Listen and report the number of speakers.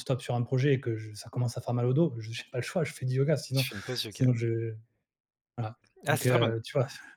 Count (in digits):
2